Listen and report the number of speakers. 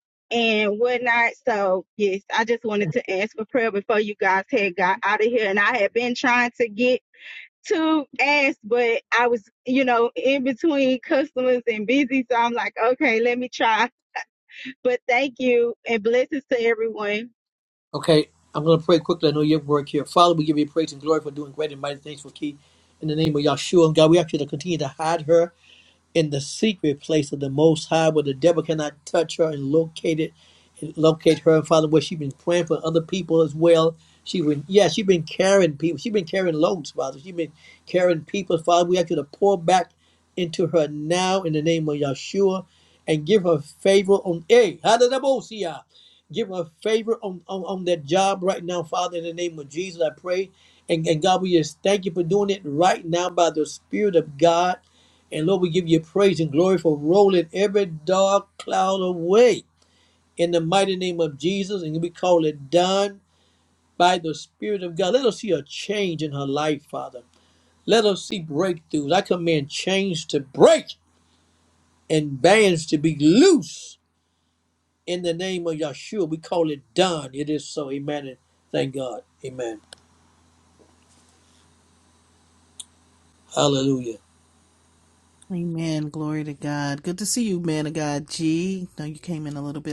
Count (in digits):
3